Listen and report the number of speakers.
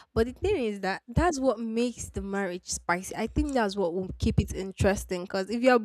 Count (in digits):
1